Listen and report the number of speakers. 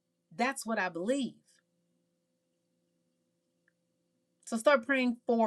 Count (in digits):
1